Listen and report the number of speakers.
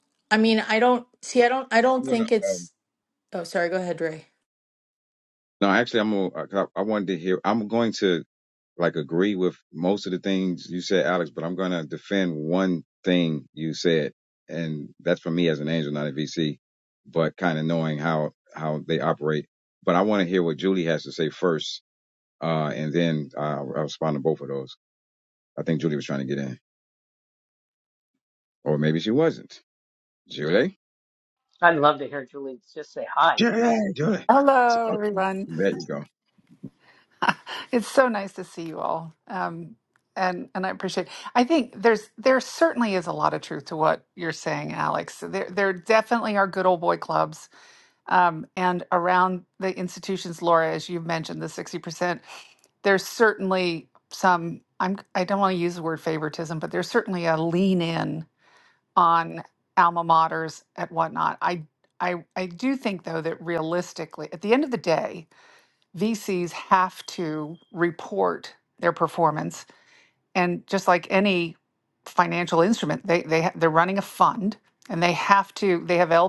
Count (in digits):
4